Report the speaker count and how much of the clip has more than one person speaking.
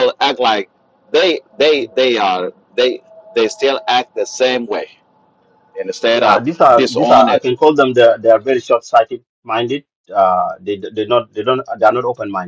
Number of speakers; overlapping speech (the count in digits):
2, about 10%